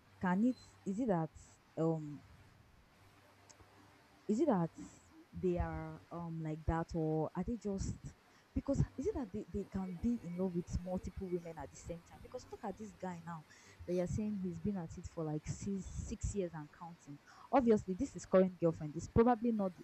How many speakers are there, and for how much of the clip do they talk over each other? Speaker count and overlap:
1, no overlap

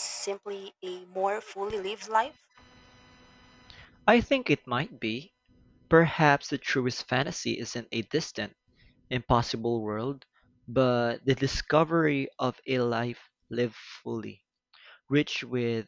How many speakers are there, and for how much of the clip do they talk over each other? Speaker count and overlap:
2, no overlap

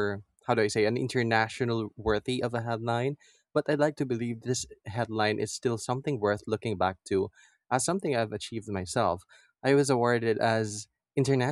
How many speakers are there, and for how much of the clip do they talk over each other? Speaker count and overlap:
1, no overlap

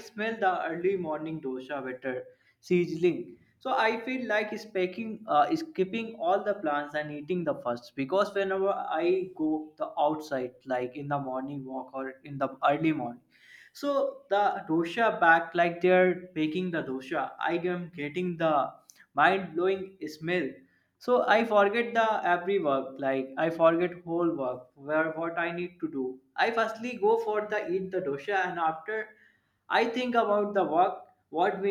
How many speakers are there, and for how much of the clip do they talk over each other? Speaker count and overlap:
1, no overlap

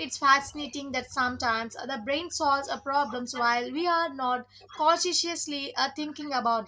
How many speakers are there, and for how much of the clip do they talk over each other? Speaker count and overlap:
1, no overlap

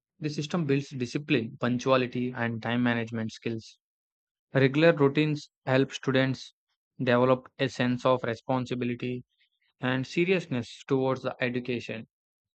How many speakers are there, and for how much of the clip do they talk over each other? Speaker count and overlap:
1, no overlap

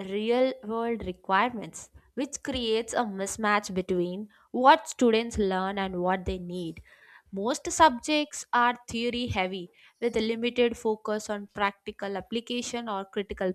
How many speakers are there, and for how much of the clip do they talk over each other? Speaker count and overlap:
1, no overlap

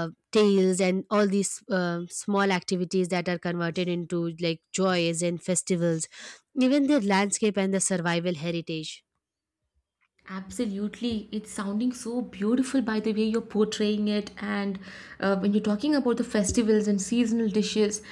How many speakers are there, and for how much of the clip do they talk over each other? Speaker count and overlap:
2, no overlap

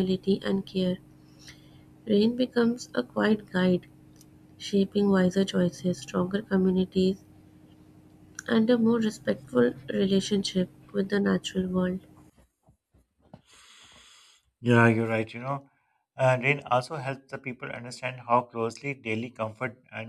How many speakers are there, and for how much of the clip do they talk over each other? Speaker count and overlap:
2, no overlap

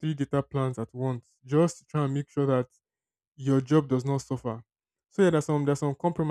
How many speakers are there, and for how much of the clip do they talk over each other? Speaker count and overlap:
1, no overlap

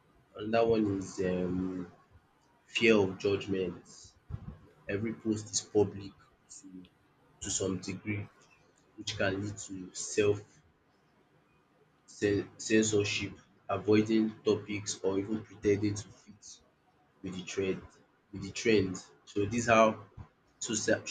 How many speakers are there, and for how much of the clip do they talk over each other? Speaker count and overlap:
1, no overlap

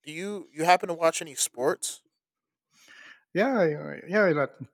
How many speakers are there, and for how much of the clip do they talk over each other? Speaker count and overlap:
2, no overlap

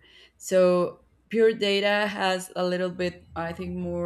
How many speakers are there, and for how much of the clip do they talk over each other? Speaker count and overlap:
1, no overlap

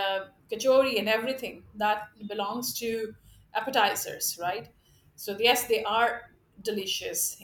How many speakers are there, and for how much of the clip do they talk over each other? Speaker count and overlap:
1, no overlap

